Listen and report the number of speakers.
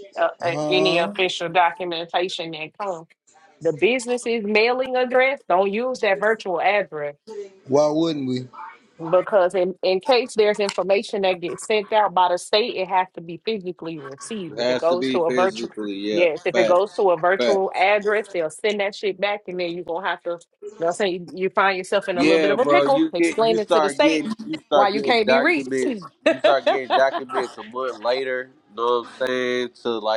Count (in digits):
3